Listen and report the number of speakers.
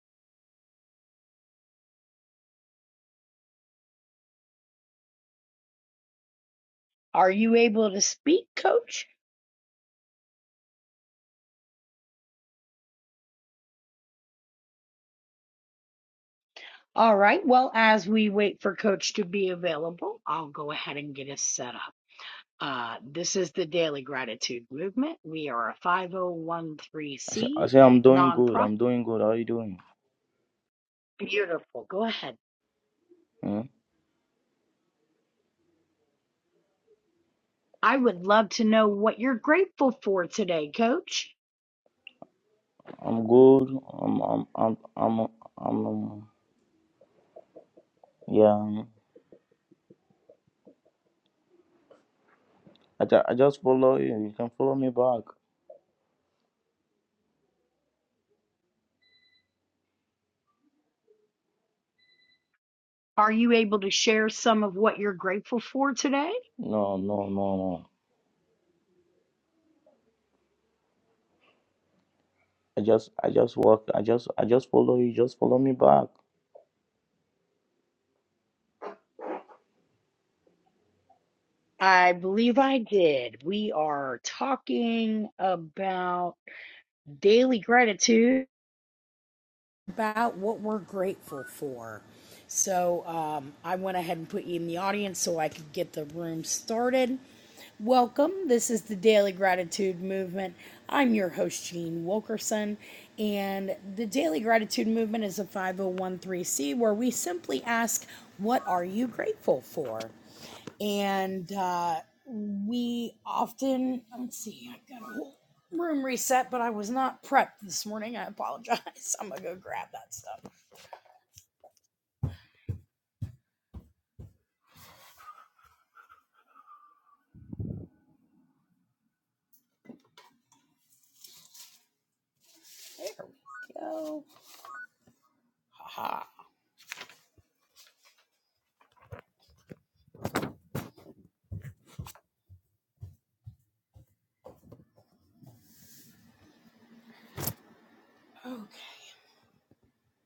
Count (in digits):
2